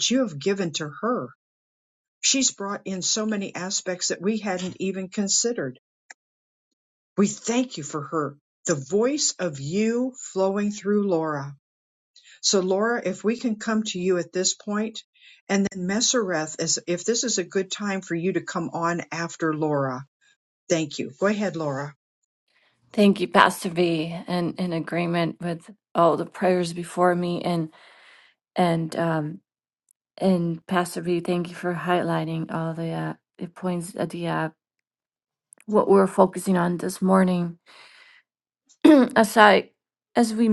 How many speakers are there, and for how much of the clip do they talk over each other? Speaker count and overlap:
2, no overlap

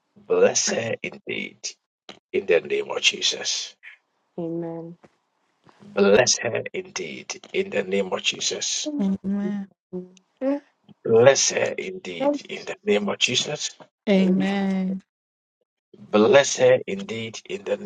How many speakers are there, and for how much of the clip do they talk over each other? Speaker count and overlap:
3, about 2%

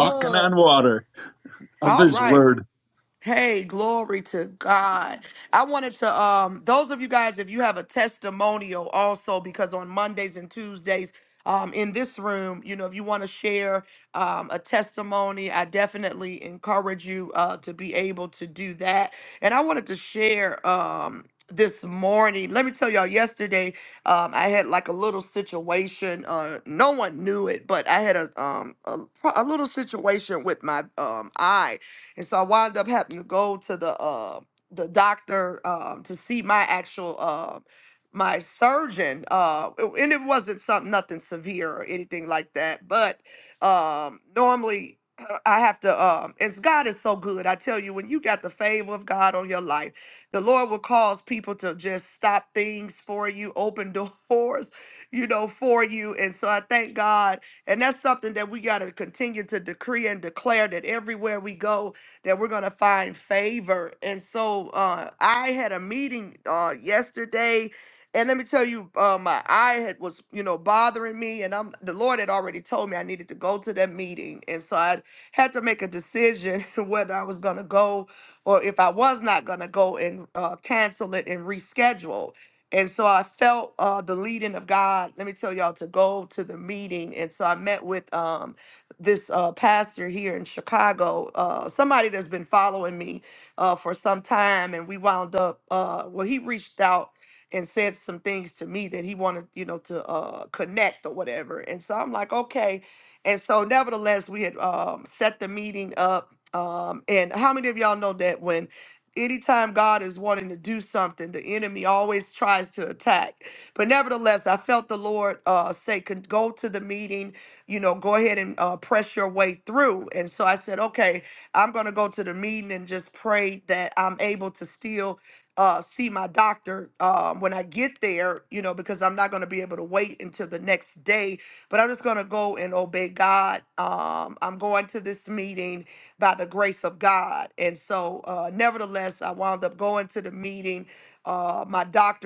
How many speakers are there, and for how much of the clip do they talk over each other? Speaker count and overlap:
2, about 1%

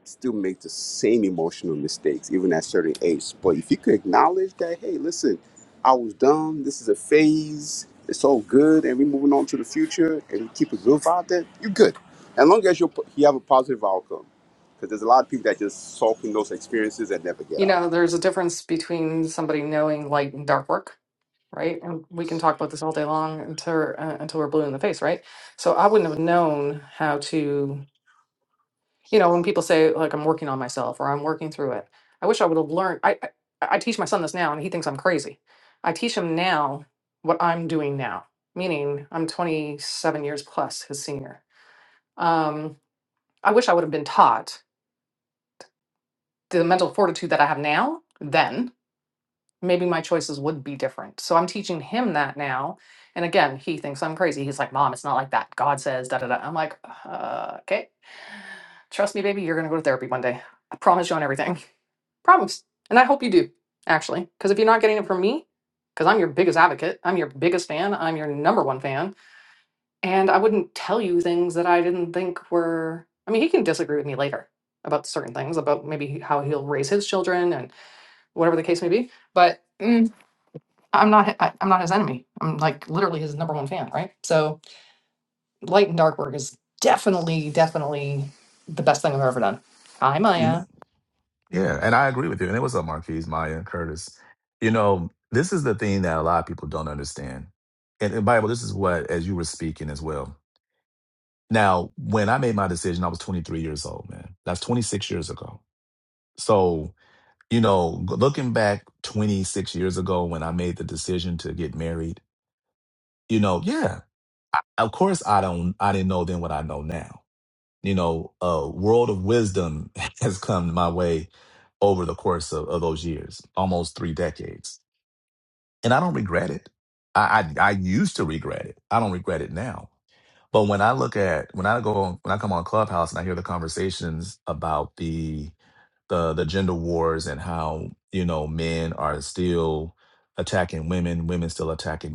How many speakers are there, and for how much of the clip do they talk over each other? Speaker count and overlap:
3, under 1%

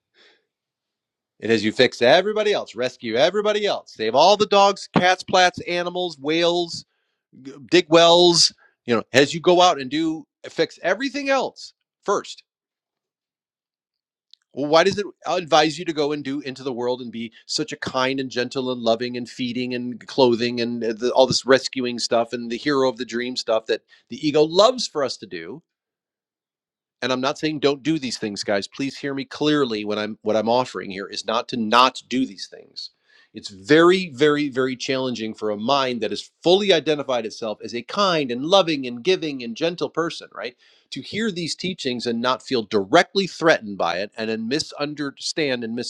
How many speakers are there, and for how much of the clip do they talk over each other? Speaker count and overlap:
1, no overlap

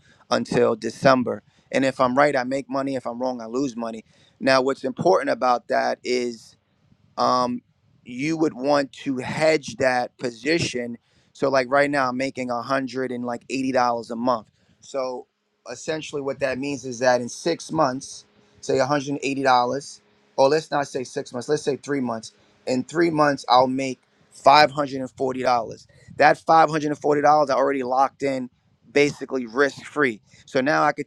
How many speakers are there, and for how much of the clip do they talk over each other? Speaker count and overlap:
1, no overlap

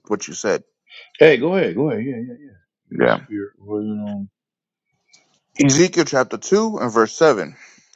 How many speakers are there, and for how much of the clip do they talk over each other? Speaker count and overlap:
2, about 1%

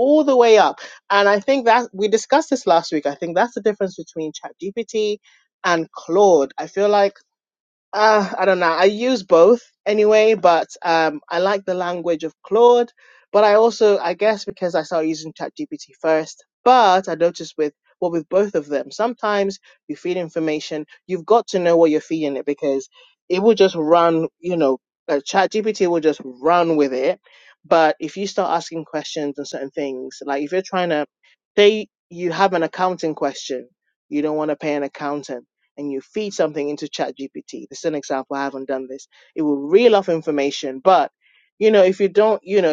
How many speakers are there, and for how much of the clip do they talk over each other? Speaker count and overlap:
1, no overlap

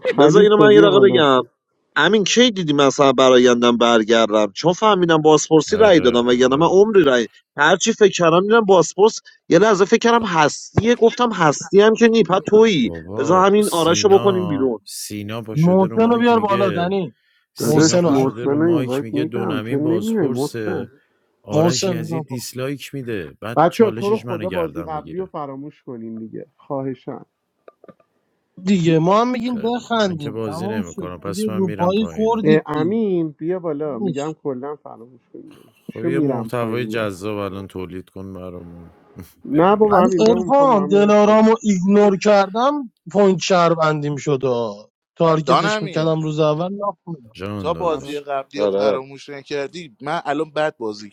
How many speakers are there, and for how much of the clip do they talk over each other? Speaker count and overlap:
5, about 37%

